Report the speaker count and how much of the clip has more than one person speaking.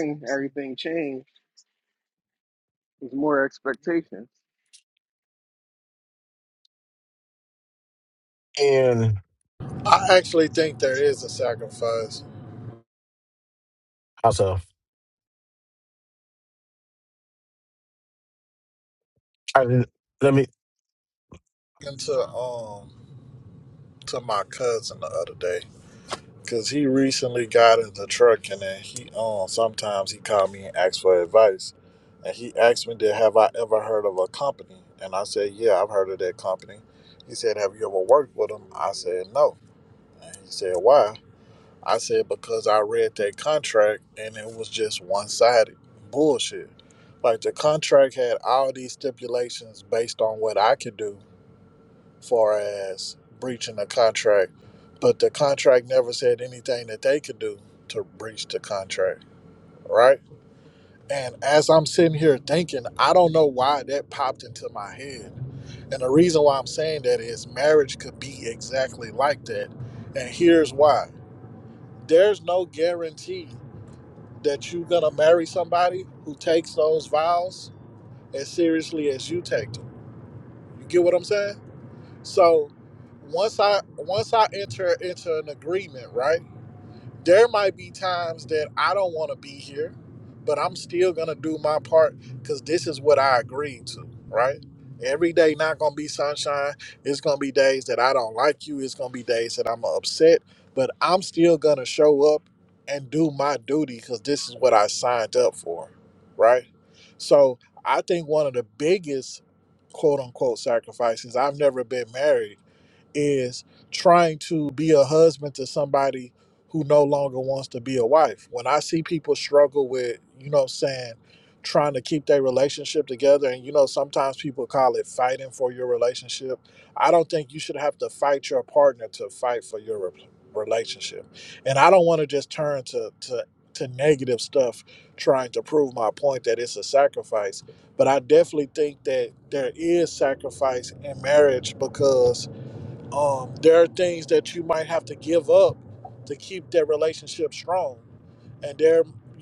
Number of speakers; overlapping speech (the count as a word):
three, no overlap